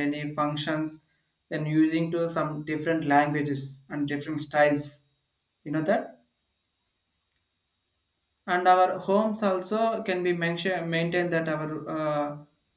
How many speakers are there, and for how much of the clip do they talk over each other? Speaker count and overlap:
one, no overlap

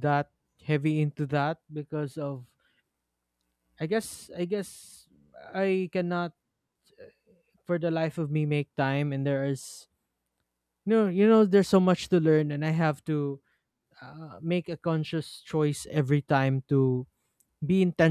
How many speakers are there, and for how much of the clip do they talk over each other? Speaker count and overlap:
one, no overlap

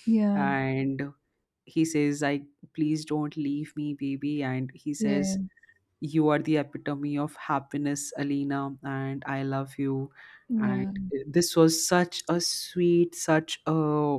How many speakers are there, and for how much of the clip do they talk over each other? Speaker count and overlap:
two, about 5%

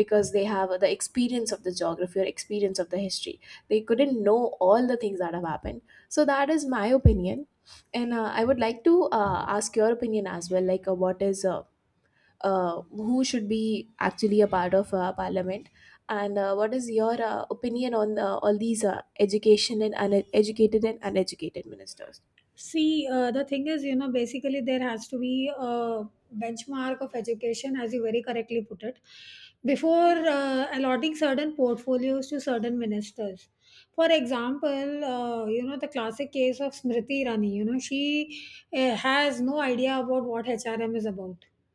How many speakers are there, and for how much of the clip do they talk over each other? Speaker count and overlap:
two, no overlap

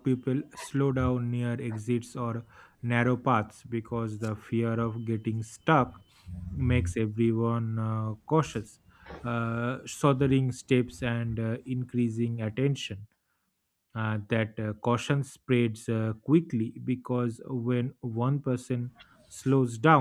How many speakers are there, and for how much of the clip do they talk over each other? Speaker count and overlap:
one, no overlap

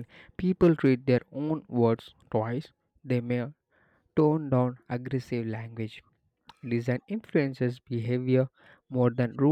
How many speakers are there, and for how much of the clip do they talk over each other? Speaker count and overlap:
one, no overlap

